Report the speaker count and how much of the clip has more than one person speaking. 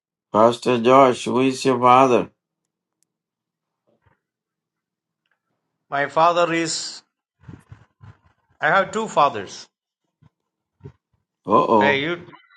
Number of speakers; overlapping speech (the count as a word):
two, about 1%